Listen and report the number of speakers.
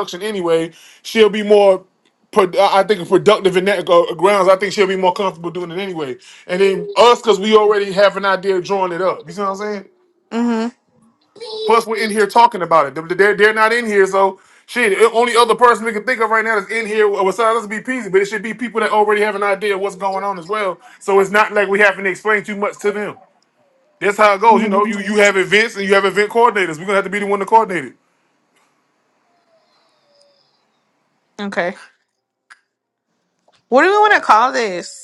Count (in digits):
2